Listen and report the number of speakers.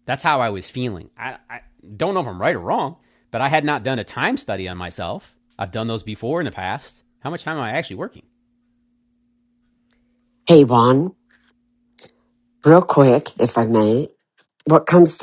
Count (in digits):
2